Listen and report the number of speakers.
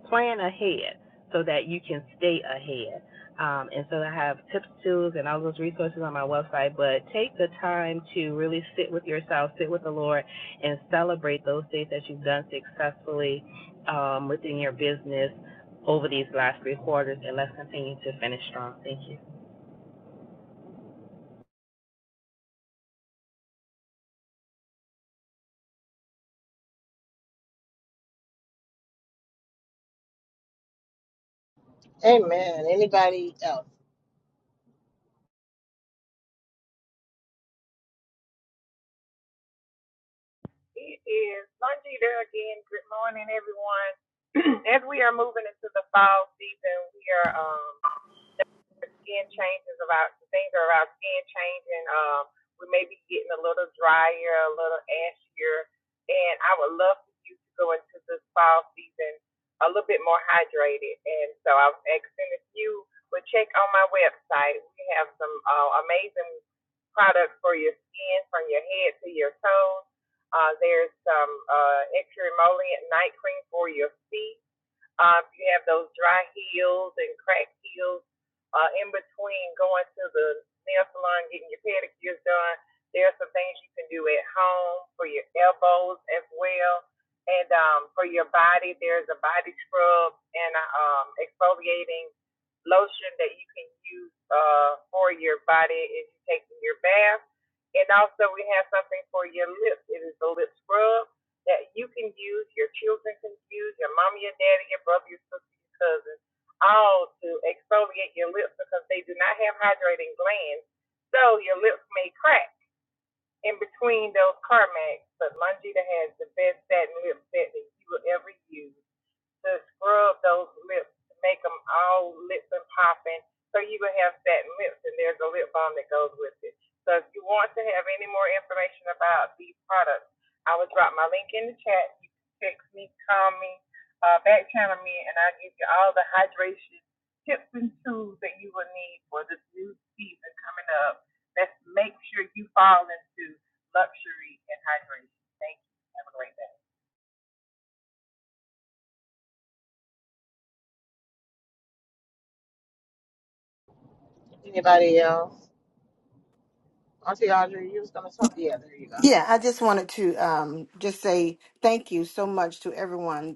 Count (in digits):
4